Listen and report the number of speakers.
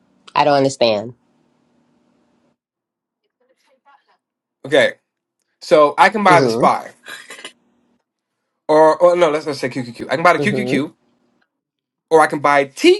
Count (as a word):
two